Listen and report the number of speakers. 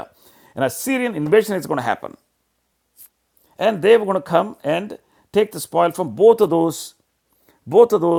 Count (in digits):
1